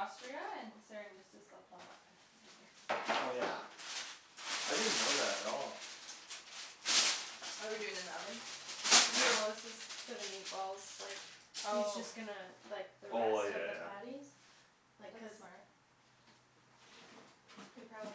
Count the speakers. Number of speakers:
three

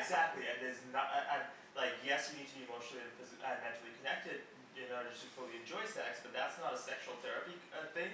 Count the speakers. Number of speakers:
one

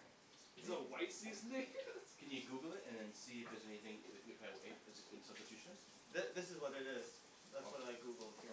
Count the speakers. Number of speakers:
three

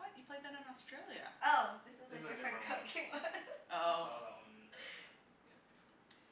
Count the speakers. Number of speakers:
three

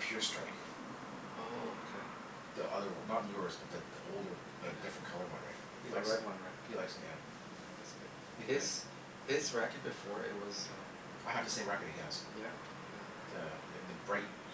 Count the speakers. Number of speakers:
two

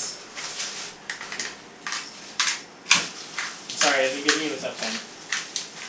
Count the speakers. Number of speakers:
one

